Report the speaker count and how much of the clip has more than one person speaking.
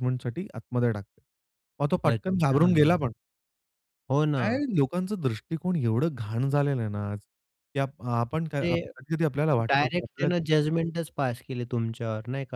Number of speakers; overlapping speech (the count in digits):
2, about 15%